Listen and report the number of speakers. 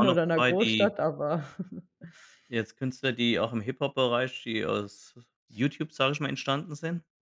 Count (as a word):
two